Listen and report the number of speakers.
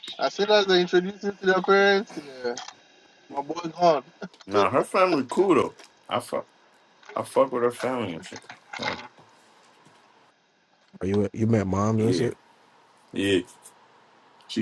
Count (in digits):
3